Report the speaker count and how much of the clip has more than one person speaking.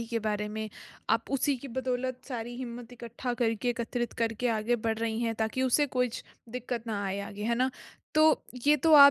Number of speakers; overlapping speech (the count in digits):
1, no overlap